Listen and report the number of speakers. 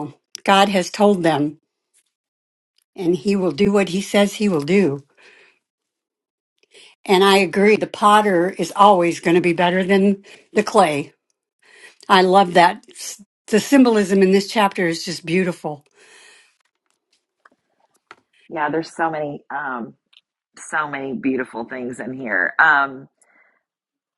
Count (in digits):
2